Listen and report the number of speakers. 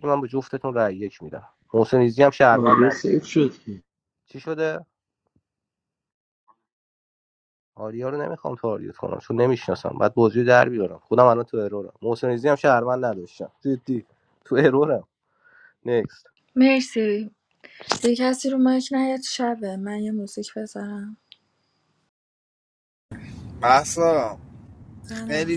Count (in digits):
4